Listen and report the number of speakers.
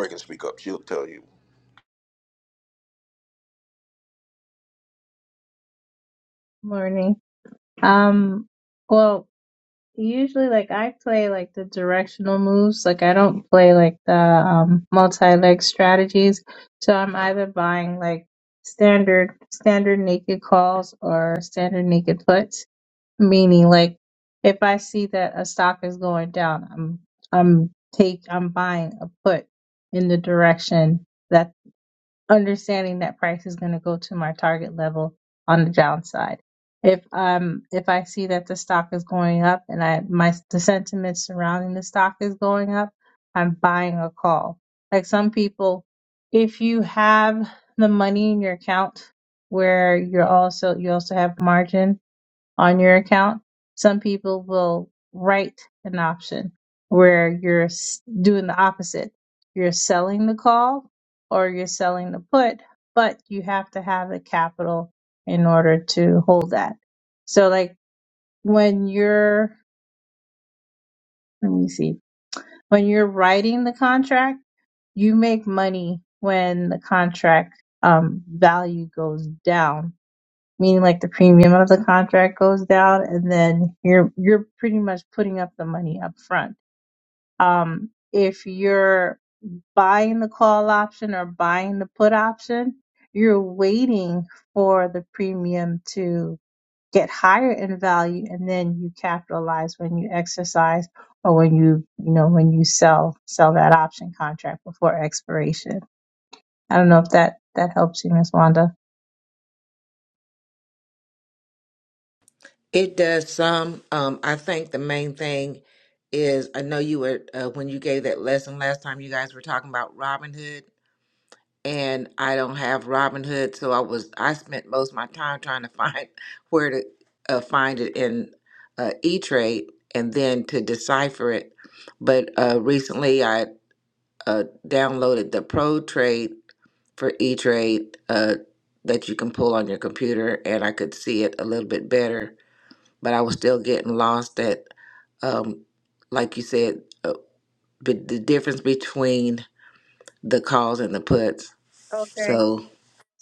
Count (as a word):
three